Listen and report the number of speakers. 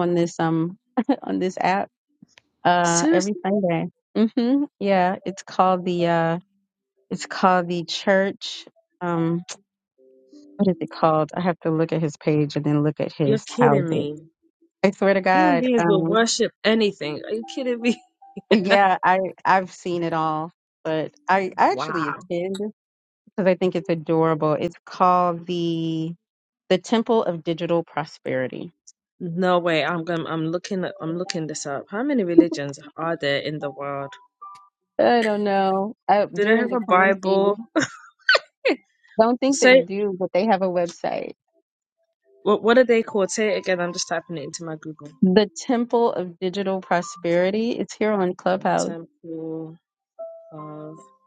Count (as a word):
two